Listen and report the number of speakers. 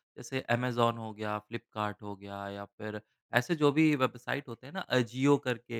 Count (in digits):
1